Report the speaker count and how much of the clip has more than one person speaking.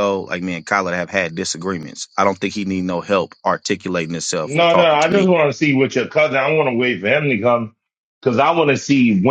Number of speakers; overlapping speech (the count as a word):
two, about 9%